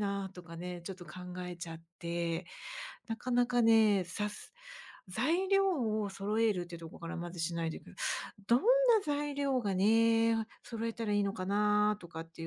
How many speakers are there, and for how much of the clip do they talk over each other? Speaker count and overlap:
one, no overlap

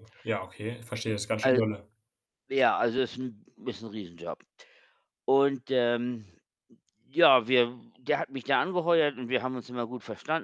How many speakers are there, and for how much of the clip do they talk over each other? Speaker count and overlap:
two, about 2%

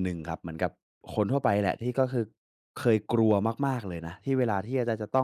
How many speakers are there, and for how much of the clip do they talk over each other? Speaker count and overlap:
one, no overlap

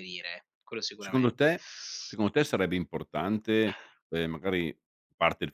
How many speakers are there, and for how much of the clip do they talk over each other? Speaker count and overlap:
two, about 5%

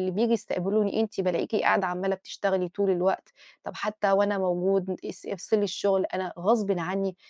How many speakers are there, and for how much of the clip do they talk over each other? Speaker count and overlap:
one, no overlap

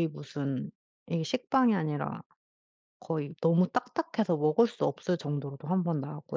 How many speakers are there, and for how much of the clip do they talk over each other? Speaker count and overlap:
one, no overlap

